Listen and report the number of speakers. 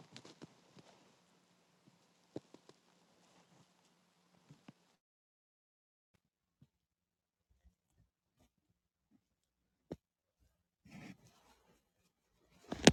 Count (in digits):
0